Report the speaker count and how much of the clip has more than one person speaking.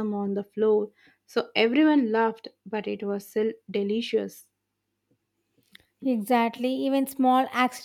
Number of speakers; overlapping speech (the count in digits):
2, no overlap